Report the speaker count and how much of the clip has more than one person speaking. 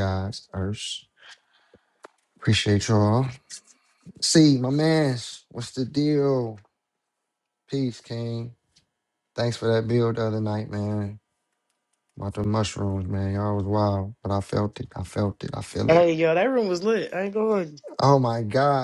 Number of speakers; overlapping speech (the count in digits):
2, about 1%